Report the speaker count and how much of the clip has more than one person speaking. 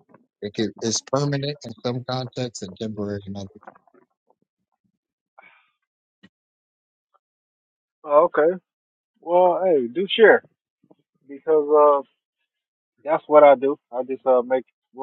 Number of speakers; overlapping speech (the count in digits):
2, no overlap